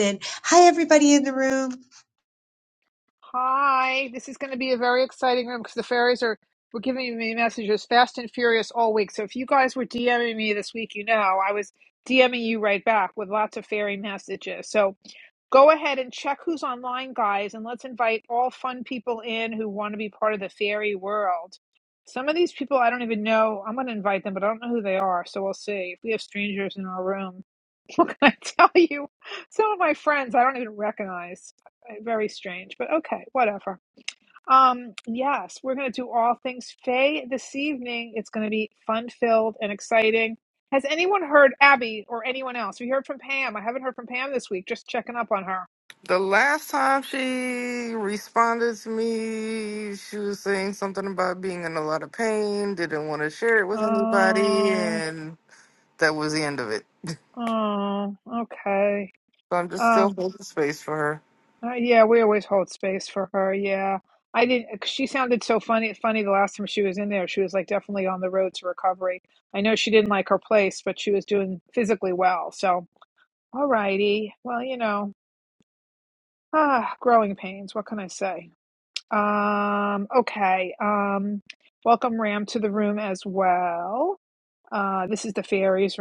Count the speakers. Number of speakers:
3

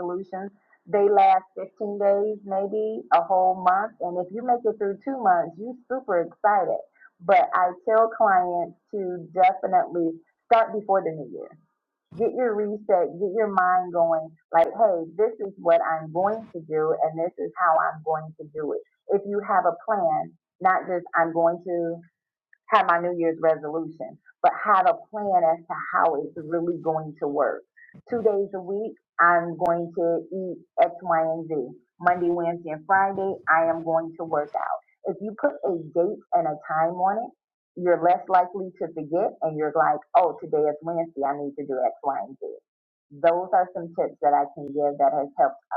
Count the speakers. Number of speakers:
1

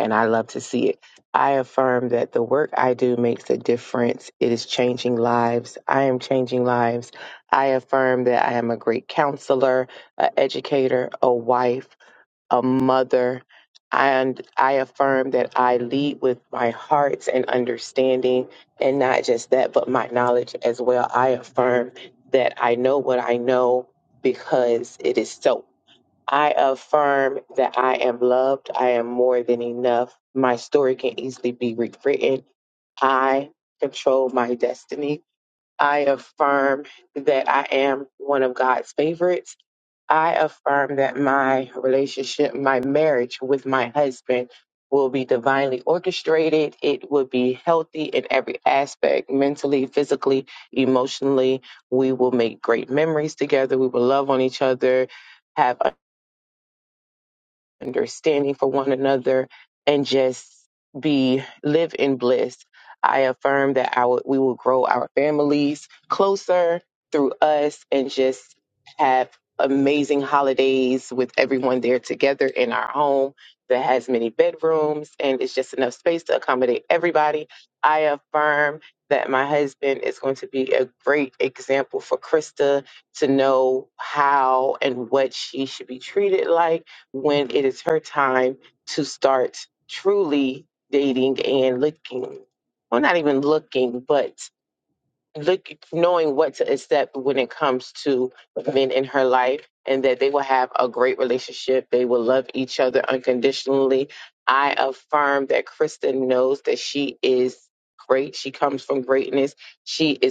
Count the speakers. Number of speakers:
1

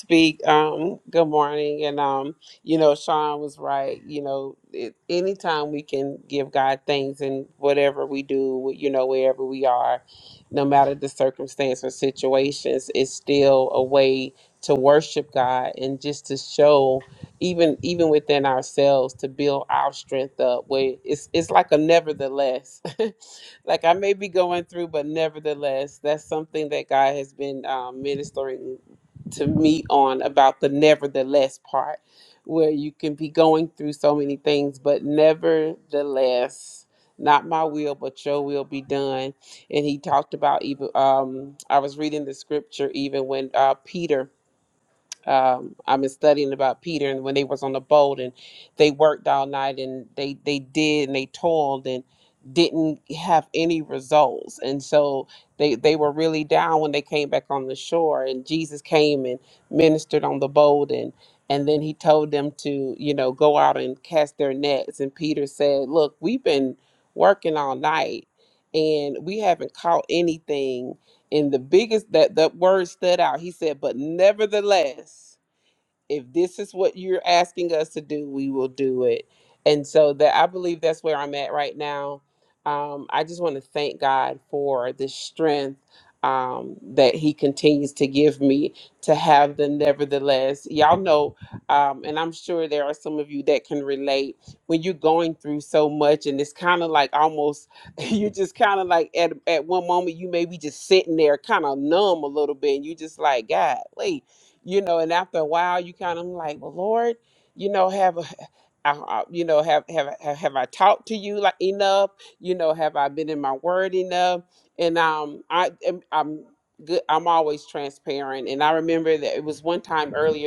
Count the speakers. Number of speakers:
1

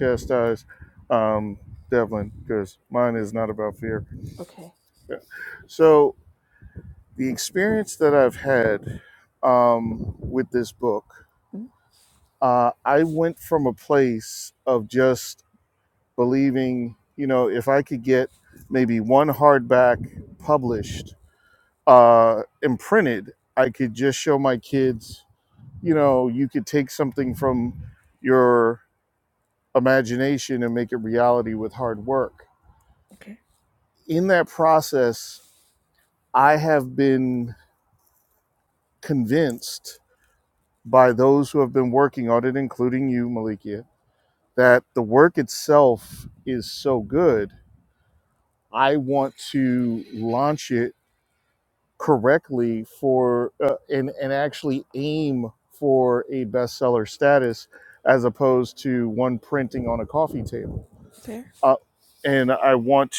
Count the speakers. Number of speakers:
2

